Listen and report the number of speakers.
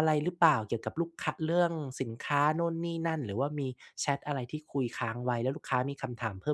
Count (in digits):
1